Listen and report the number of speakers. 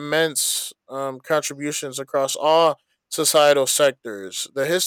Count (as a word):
one